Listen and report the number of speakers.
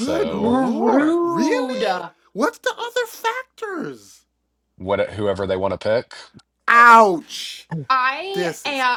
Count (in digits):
3